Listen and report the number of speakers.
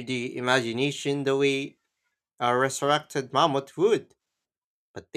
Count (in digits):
1